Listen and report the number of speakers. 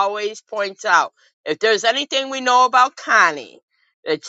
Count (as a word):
one